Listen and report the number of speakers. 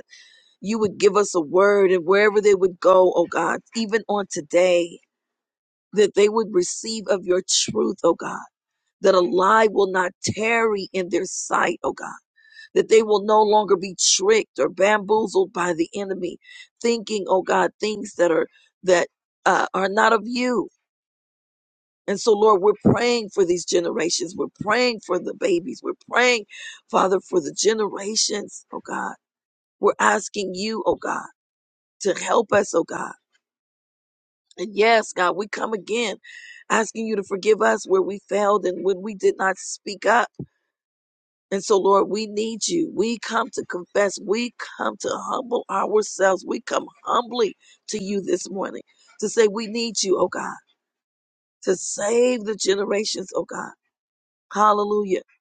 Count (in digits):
1